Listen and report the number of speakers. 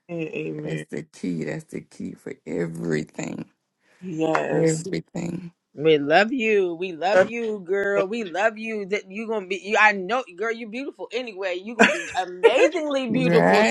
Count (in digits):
3